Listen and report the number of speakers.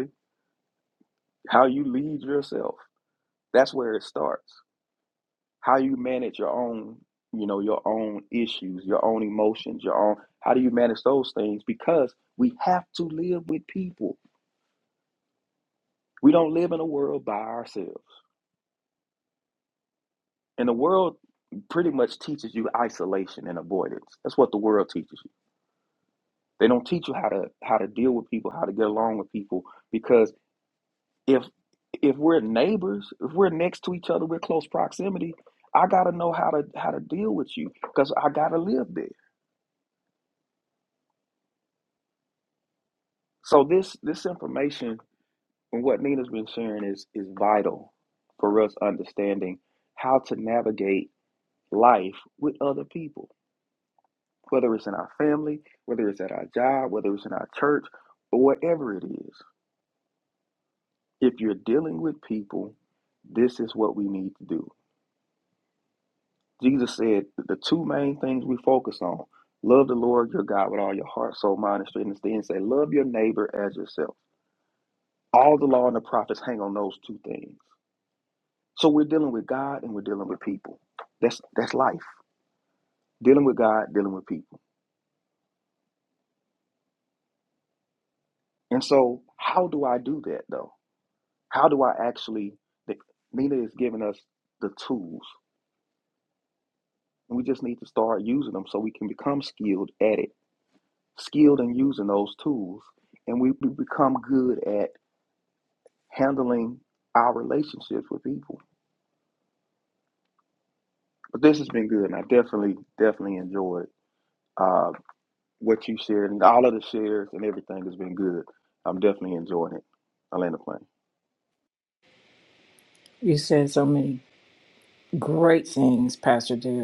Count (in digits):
2